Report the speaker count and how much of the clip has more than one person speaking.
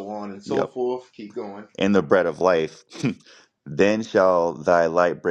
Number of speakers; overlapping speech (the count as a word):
two, about 4%